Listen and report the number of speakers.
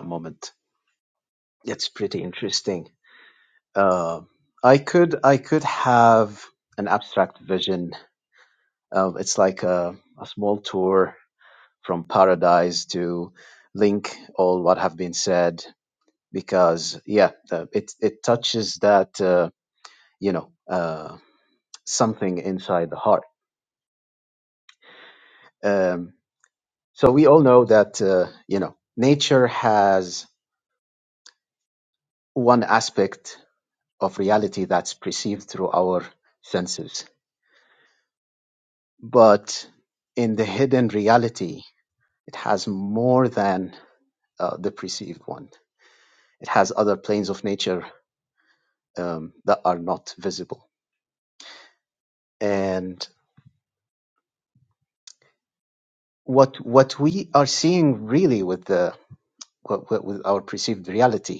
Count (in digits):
1